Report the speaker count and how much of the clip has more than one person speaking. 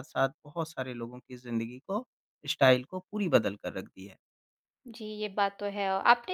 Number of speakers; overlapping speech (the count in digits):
2, no overlap